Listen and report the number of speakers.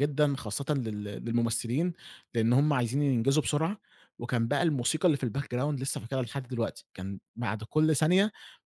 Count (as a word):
one